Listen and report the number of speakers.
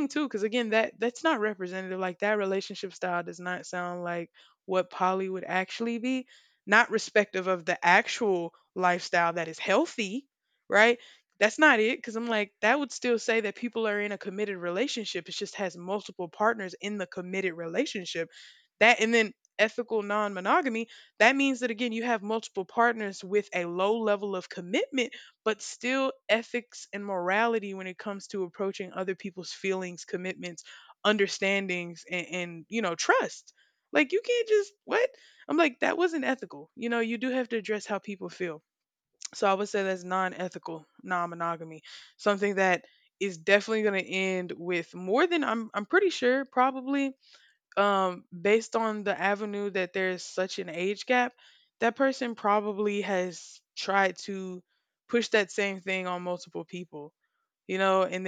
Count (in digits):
1